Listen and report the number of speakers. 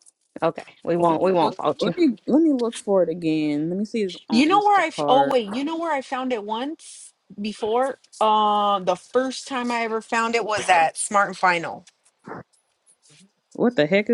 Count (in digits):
3